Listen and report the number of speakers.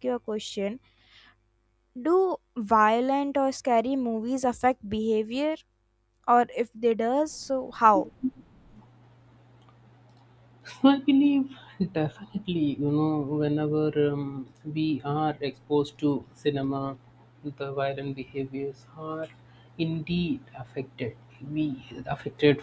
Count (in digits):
2